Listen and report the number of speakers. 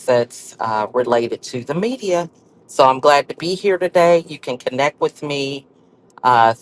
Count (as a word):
one